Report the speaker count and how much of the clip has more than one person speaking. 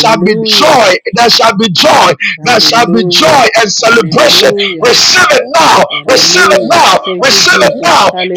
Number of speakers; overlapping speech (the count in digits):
2, about 59%